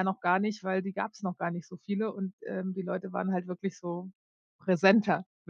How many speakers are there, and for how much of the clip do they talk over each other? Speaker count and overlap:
one, no overlap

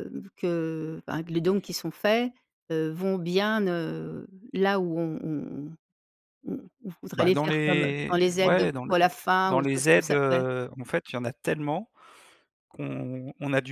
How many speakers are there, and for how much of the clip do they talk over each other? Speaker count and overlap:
two, about 20%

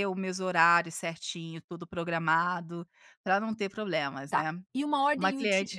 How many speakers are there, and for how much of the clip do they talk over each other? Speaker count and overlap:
two, about 15%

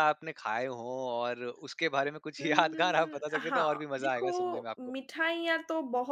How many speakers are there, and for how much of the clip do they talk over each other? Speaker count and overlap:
two, about 32%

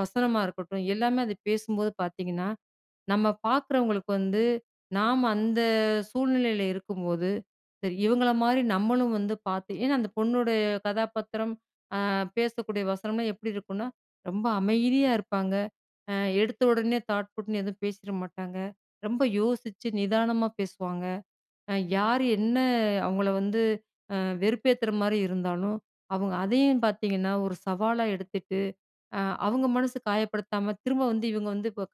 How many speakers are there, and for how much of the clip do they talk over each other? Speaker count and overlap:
one, no overlap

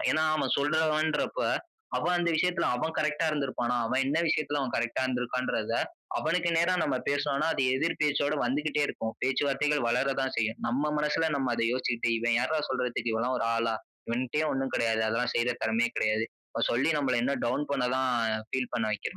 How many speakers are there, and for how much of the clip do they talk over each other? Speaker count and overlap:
one, no overlap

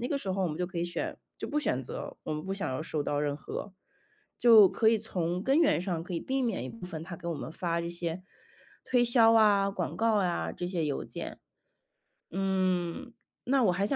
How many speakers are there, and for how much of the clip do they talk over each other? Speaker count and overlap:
one, no overlap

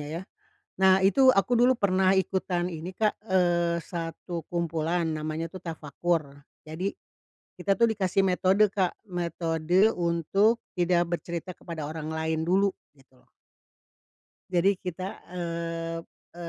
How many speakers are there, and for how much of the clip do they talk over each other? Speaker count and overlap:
one, no overlap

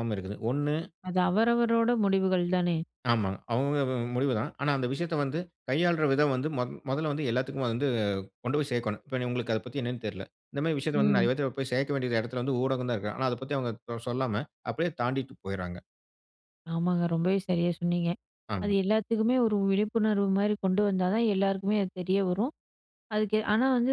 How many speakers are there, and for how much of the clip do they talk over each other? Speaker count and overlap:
two, about 2%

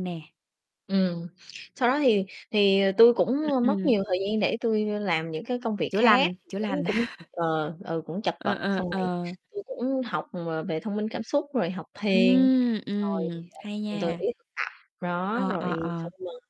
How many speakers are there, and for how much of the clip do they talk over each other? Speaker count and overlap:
two, about 23%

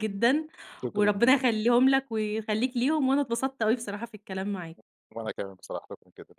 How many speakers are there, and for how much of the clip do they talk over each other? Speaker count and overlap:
two, about 6%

